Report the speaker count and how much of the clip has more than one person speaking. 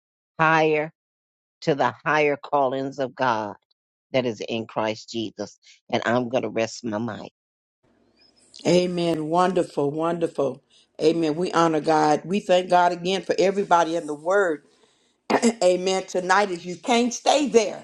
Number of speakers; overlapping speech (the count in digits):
2, no overlap